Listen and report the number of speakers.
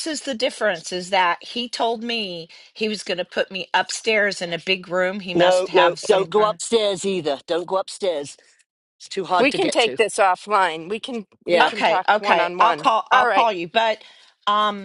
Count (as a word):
three